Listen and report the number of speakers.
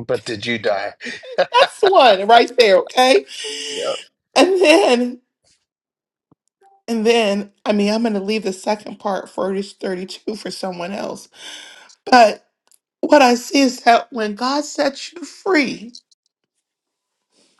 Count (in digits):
2